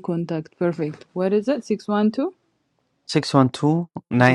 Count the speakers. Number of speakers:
two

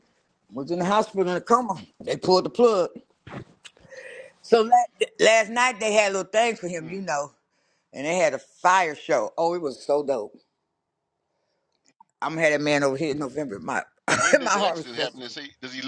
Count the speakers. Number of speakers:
two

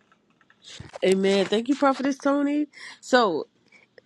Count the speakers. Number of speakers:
one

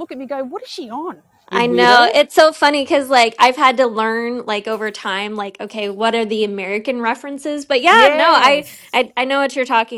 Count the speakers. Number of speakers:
two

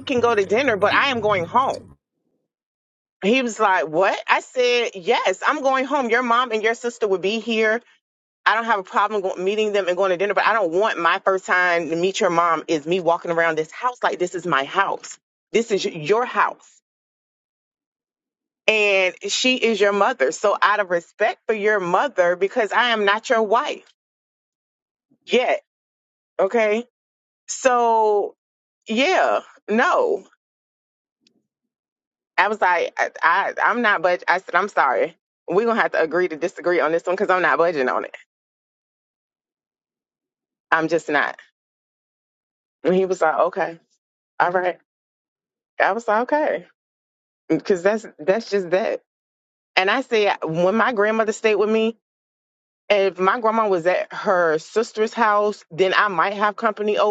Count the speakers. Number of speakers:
one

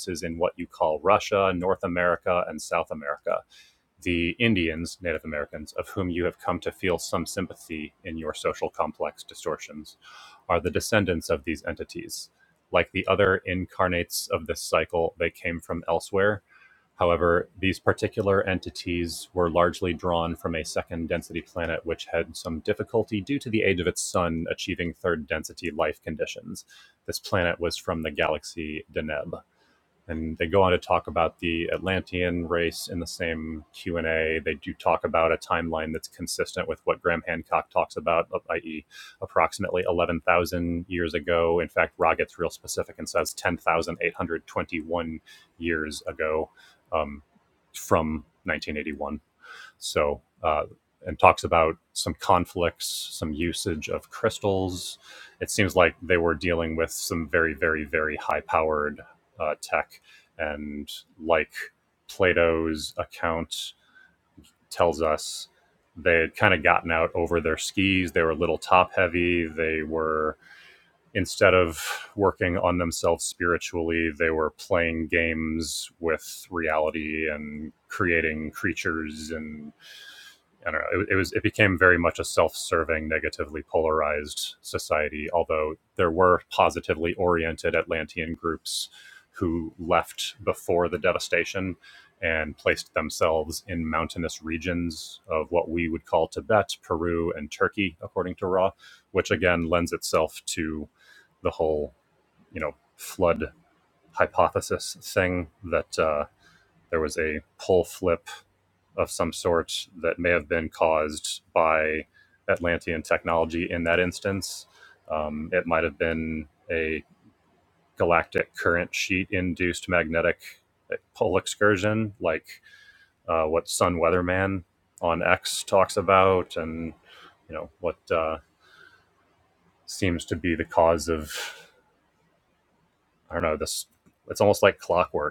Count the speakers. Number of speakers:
one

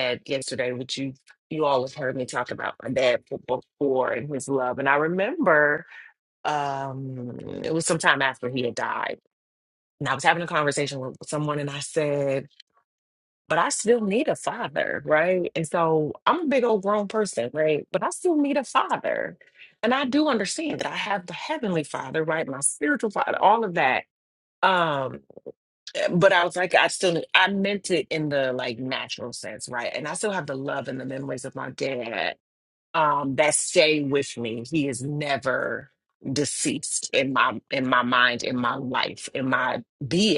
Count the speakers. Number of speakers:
one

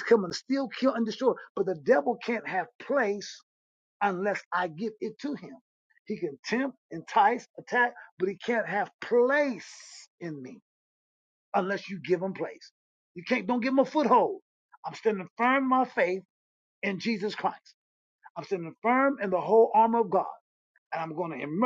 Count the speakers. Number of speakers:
one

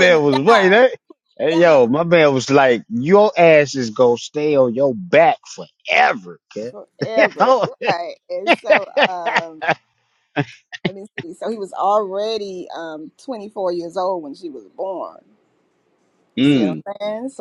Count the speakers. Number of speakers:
two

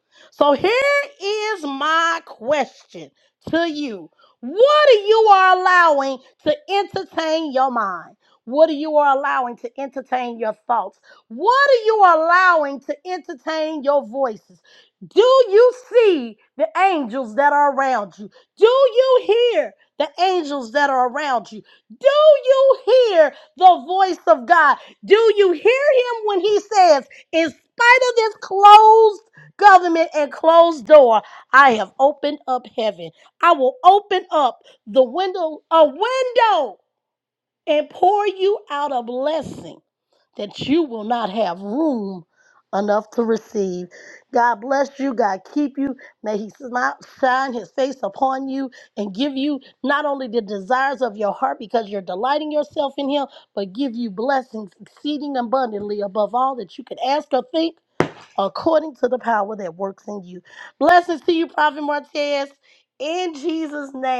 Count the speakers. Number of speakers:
one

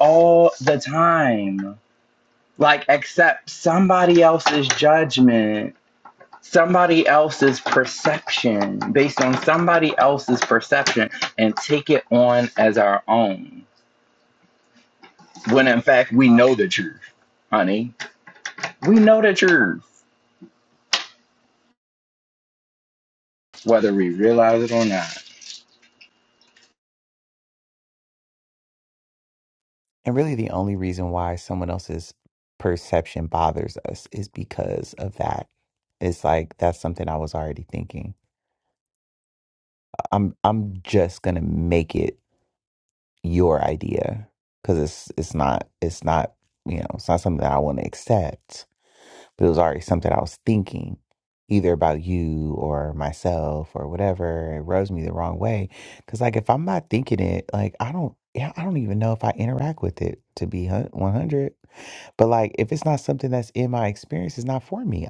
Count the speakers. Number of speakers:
two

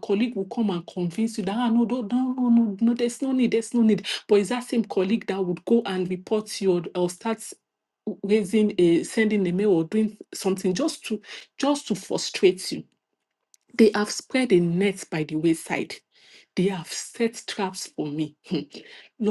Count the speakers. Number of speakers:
one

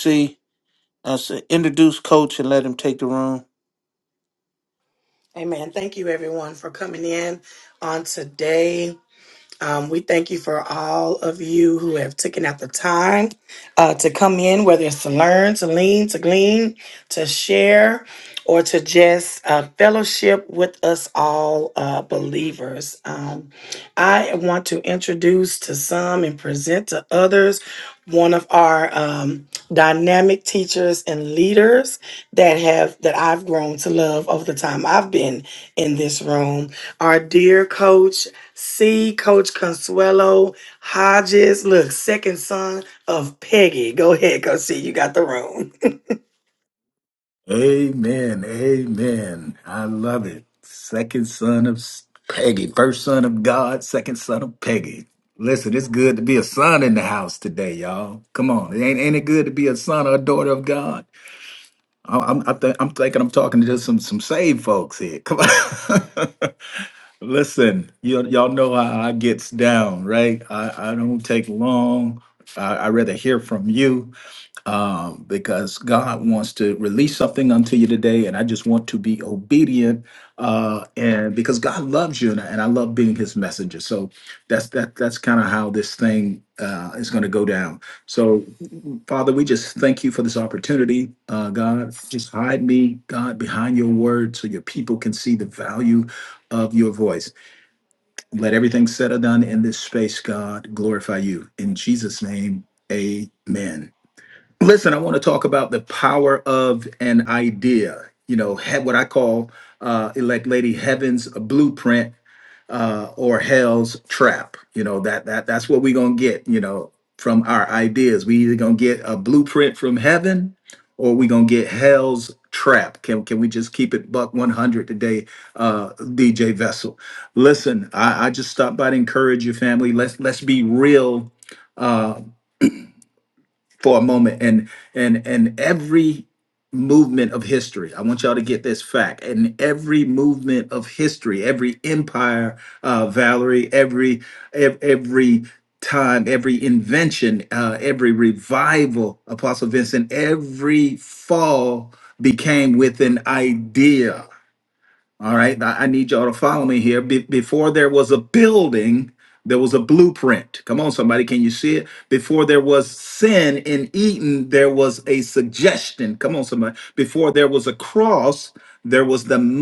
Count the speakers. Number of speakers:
three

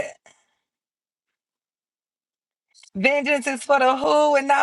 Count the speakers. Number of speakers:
one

